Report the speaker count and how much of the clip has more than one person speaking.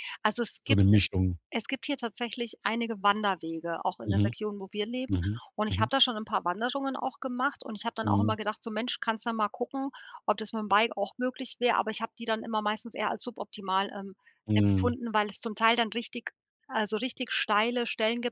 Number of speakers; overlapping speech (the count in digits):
2, about 8%